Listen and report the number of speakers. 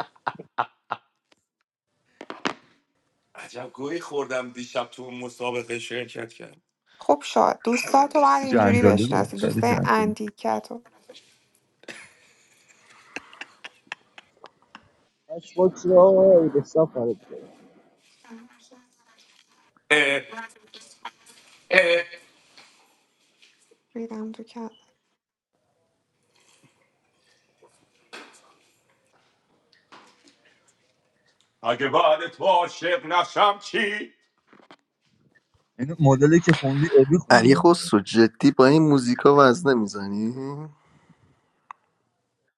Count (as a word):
five